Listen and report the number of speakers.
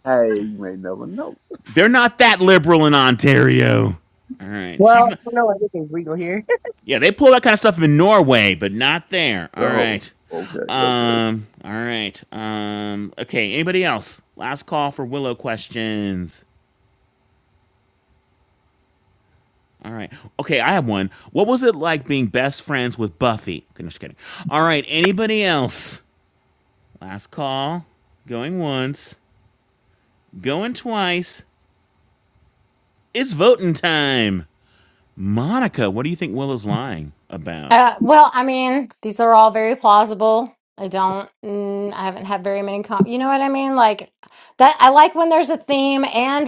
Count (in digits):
4